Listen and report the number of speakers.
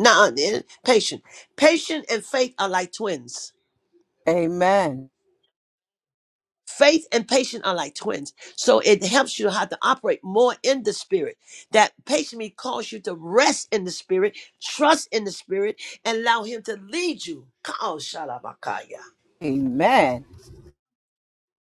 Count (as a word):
two